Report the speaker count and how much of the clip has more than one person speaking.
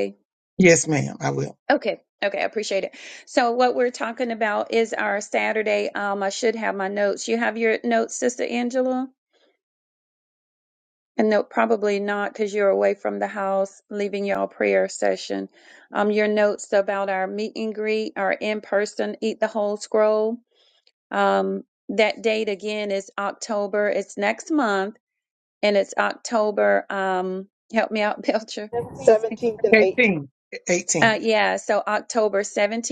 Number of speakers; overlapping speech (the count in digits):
3, about 1%